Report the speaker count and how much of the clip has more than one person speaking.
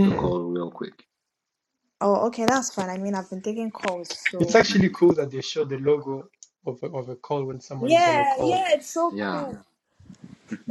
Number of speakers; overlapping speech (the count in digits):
3, about 16%